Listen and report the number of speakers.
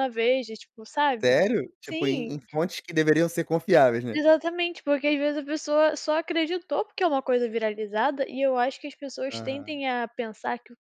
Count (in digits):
2